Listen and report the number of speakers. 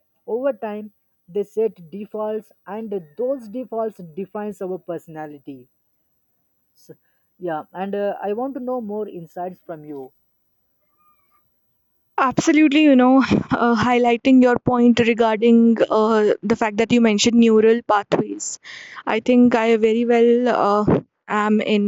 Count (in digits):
2